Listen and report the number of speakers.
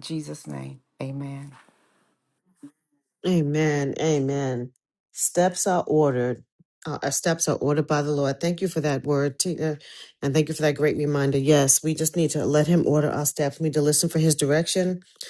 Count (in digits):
2